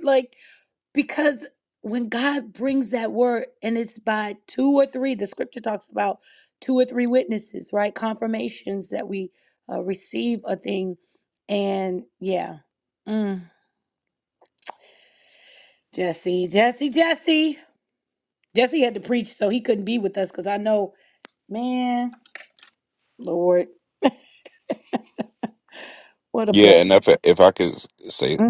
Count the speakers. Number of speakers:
2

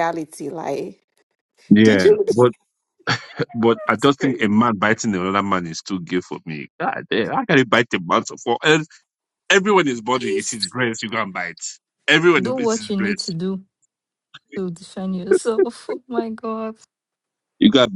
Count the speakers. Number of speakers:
3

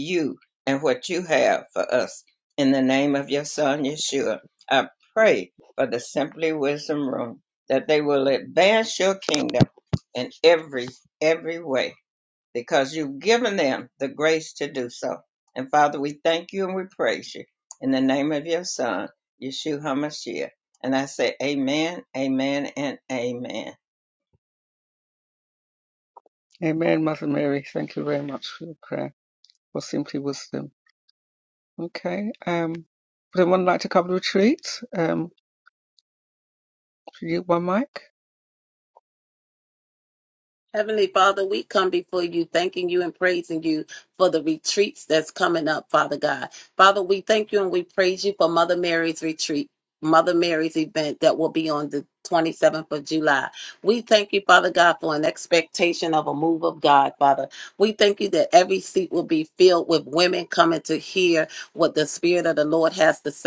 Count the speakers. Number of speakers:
3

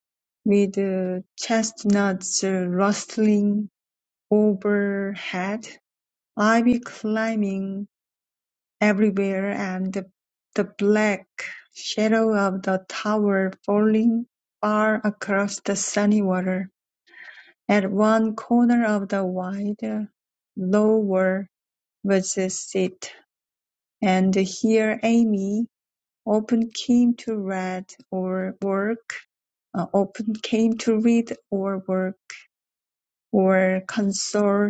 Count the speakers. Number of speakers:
1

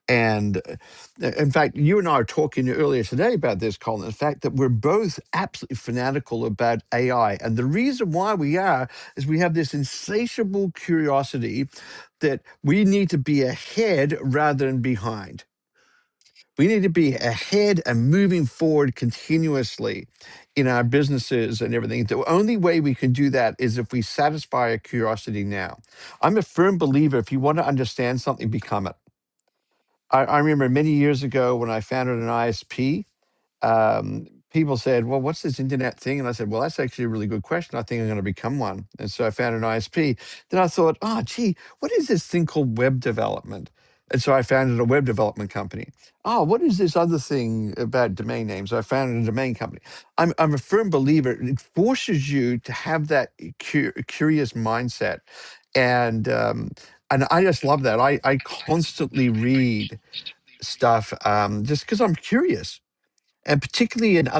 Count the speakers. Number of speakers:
1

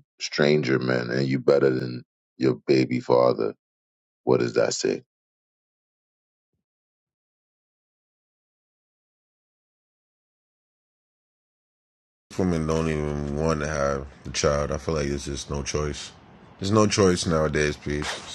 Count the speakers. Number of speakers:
2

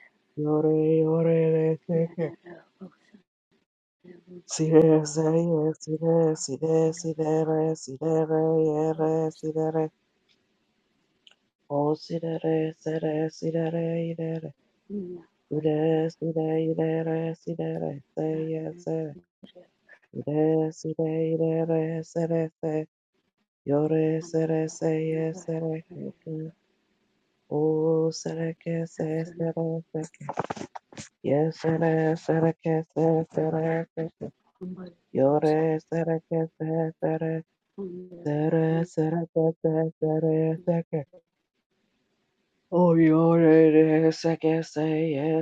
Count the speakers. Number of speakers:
2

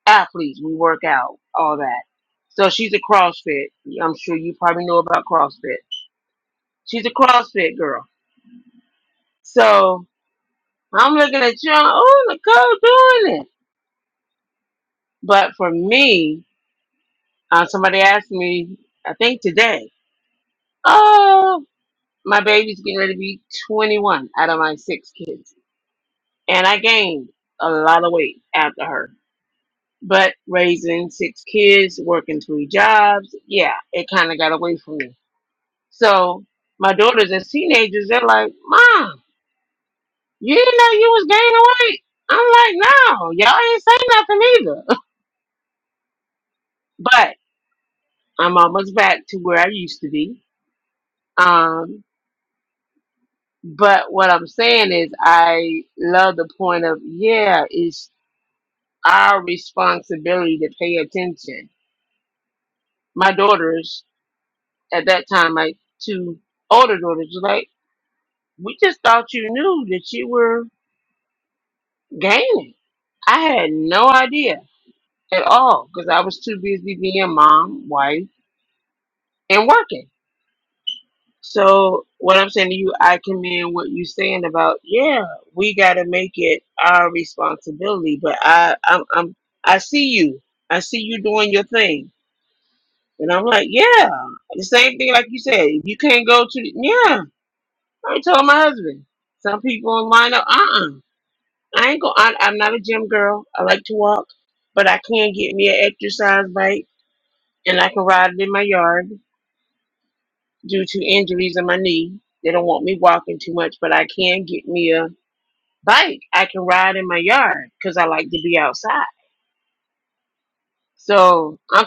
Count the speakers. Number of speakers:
1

